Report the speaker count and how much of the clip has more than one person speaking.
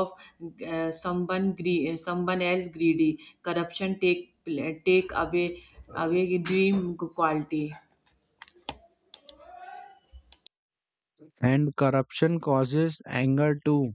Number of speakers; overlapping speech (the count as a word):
two, no overlap